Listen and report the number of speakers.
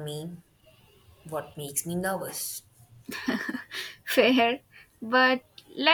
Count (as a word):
two